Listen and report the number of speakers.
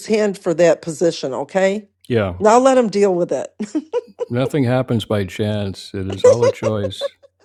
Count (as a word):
two